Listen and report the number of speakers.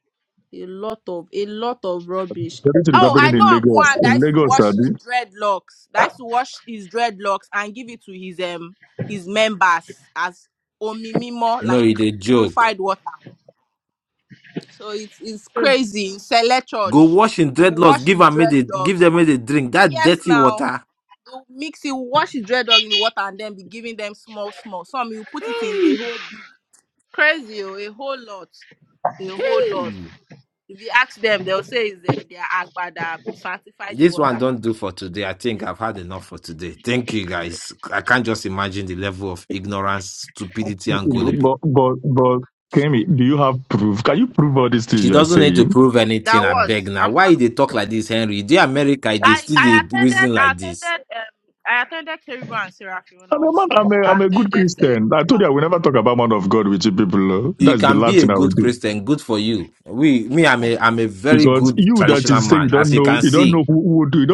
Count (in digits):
3